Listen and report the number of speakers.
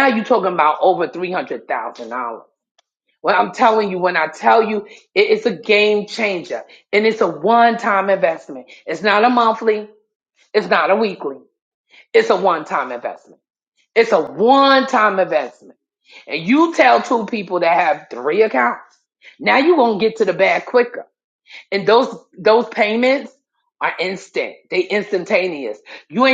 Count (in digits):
1